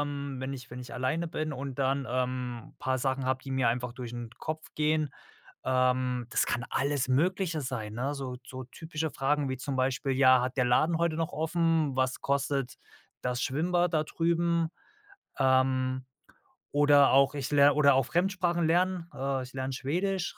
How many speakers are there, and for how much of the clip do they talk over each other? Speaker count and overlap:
one, no overlap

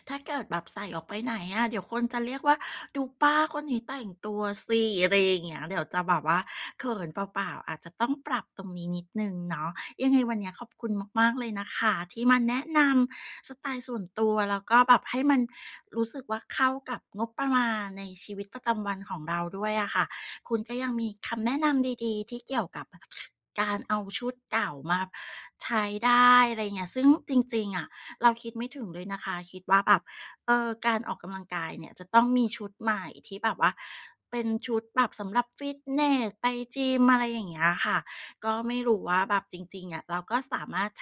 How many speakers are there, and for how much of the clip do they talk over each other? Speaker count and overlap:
one, no overlap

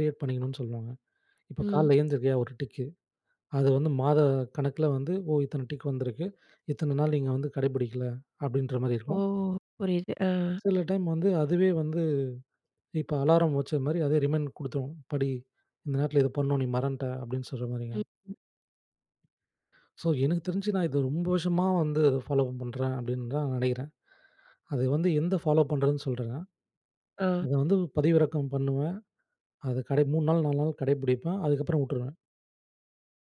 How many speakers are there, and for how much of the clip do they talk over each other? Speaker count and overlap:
two, about 2%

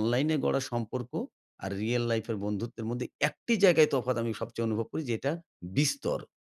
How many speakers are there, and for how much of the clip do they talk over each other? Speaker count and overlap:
one, no overlap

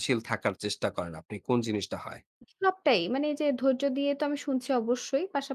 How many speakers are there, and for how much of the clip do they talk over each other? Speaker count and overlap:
two, no overlap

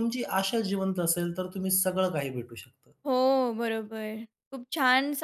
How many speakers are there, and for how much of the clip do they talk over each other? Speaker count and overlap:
two, no overlap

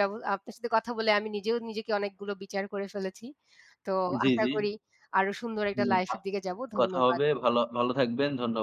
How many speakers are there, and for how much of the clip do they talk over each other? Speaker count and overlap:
two, about 14%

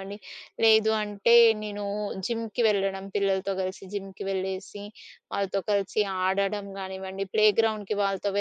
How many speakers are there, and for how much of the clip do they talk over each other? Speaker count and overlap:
one, no overlap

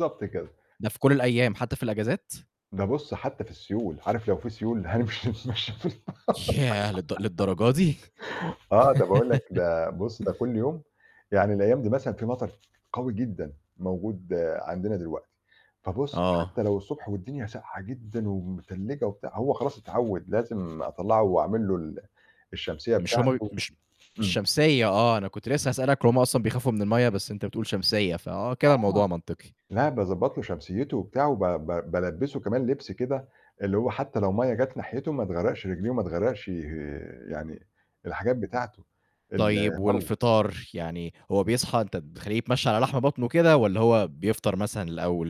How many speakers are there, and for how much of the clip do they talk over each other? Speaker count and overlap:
two, about 5%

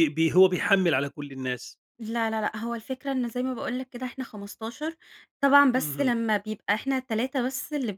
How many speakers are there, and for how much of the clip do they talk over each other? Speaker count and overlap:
two, about 5%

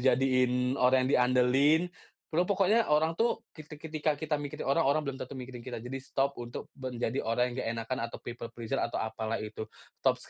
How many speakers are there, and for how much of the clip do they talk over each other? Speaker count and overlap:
one, no overlap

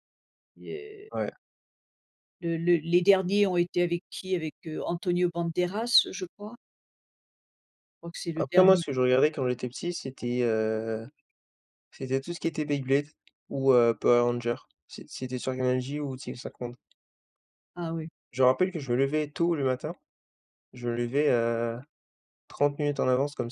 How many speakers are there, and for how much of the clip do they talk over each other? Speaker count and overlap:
two, about 2%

